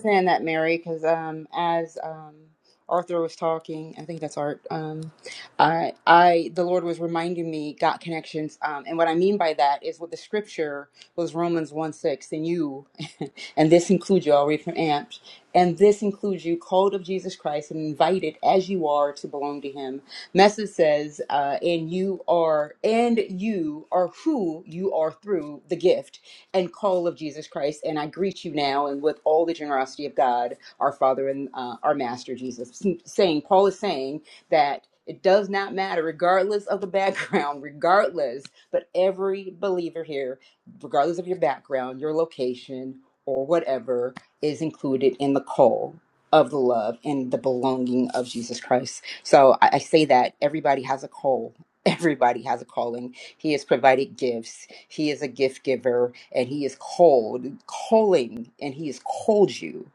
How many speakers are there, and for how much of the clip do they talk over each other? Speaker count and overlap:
one, no overlap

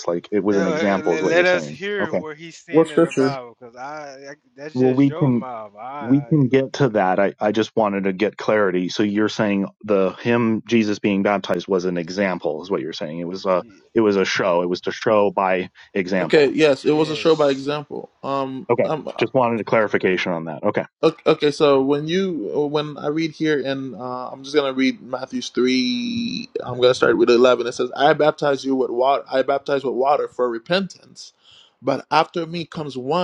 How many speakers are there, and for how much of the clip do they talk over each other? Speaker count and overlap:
three, about 16%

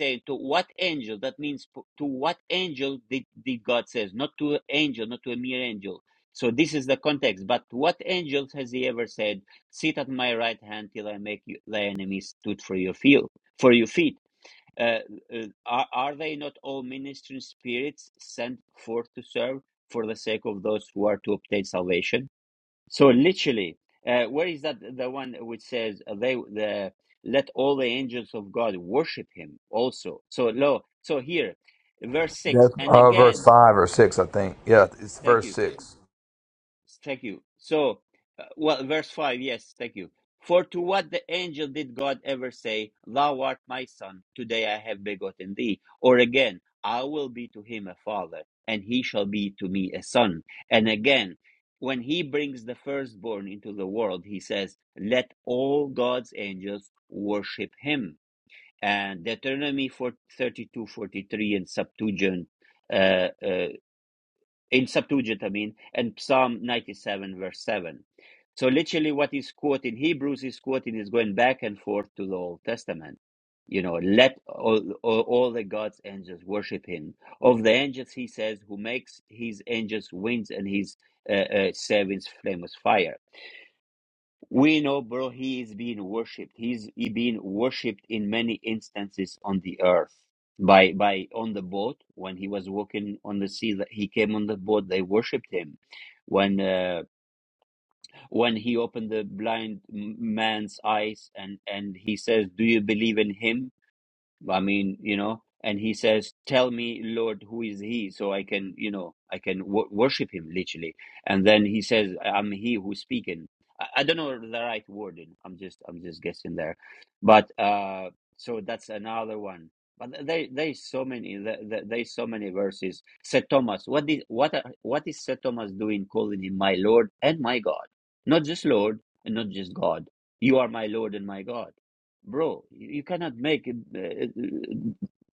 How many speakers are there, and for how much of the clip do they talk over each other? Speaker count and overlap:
two, about 1%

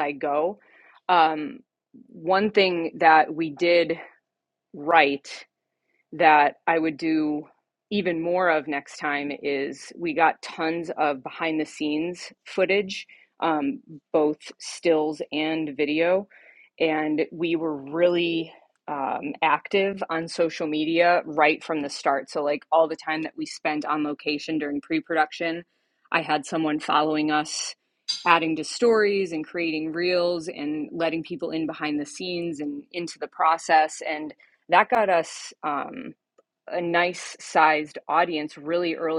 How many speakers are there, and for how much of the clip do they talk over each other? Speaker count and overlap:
one, no overlap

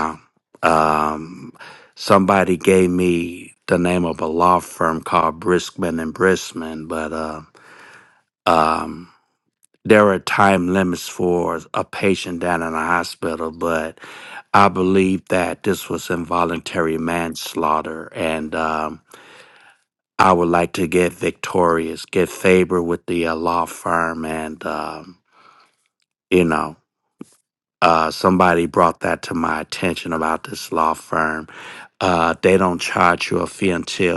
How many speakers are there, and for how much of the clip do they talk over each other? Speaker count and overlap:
one, no overlap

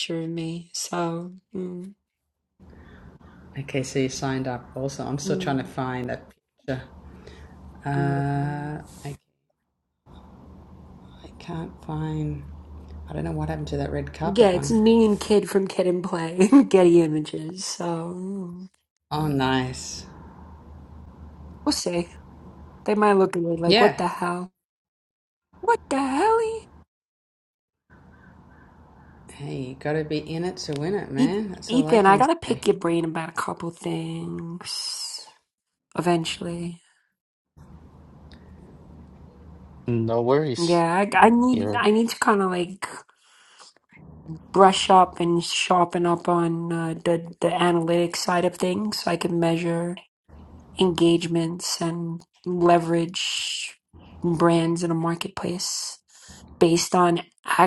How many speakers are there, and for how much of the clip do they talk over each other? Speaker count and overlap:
three, about 7%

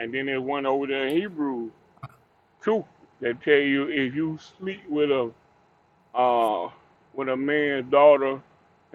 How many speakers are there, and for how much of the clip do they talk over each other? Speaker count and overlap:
one, no overlap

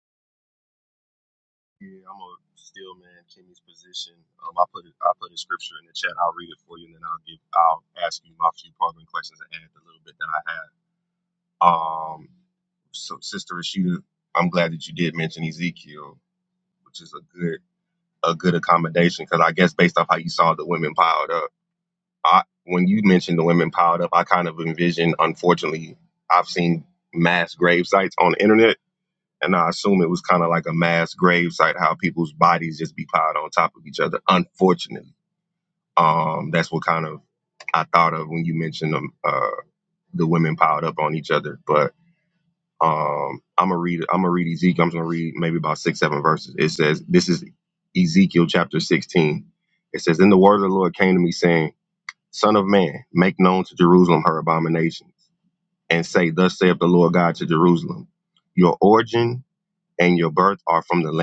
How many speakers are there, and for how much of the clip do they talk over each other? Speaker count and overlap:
one, no overlap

